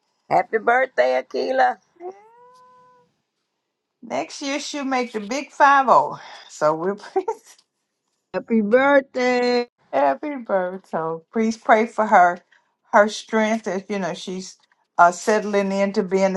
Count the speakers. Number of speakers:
3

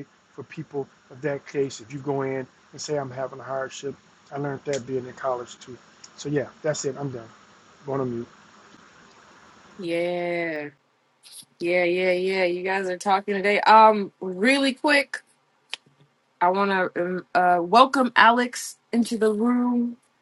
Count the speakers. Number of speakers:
2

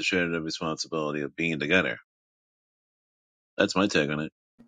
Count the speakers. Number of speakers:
1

